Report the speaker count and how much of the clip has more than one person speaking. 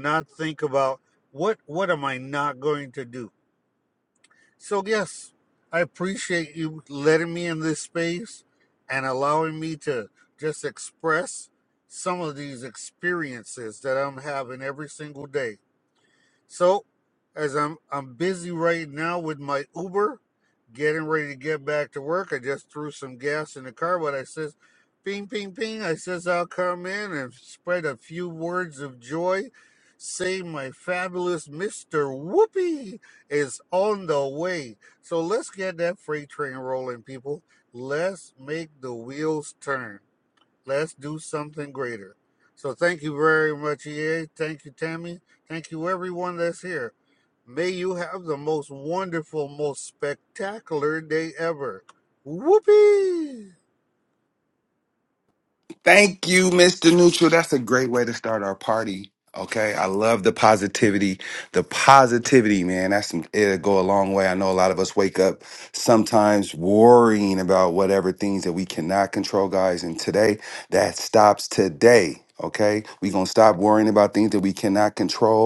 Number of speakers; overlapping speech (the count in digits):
2, no overlap